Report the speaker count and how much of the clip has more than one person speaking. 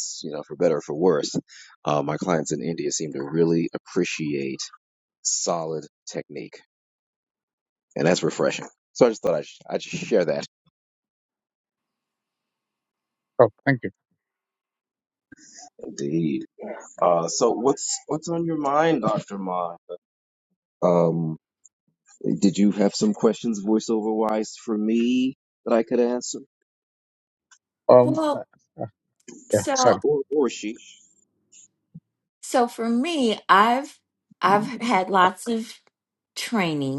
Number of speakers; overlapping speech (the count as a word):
three, about 2%